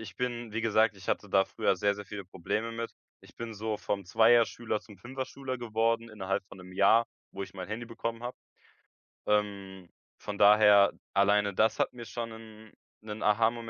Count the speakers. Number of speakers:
one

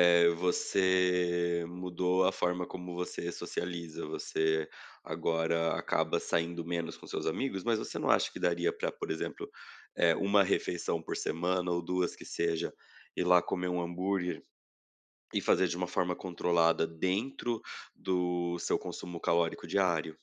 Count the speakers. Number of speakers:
one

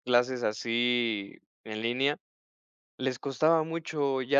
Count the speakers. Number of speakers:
one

